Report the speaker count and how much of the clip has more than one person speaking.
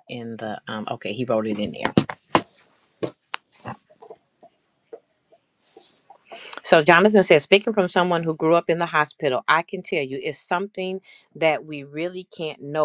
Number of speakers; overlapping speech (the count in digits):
1, no overlap